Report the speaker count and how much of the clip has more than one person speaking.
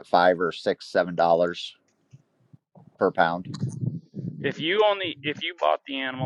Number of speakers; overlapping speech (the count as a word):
two, no overlap